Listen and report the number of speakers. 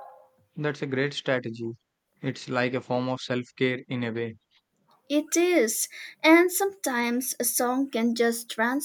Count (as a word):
two